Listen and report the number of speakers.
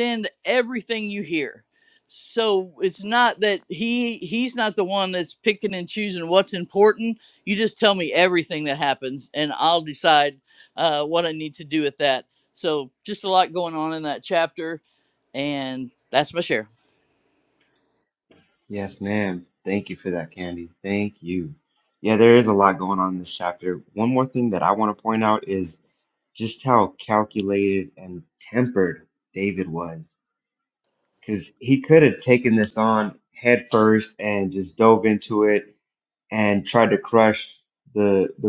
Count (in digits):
2